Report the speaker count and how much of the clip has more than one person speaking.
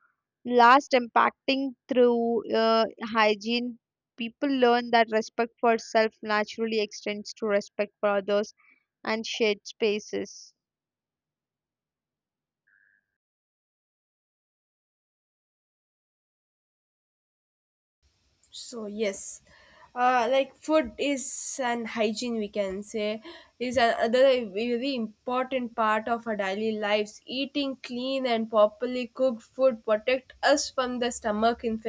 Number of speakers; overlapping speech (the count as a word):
two, no overlap